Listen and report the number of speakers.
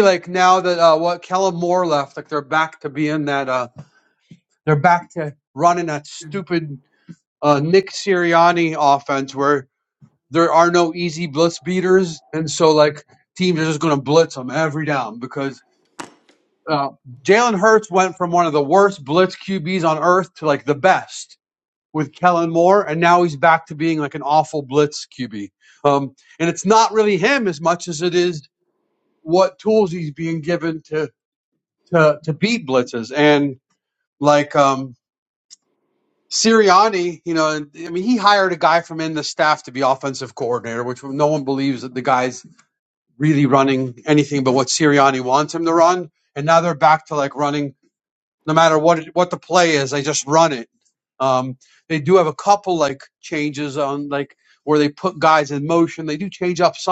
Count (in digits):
1